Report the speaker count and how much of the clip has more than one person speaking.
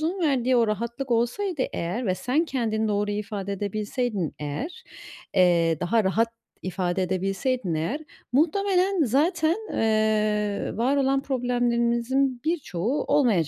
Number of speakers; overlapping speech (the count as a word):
one, no overlap